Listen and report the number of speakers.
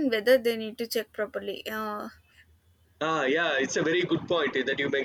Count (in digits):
2